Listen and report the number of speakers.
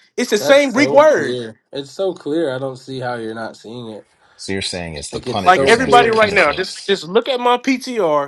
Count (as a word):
three